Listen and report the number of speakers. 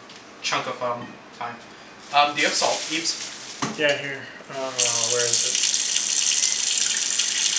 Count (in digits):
2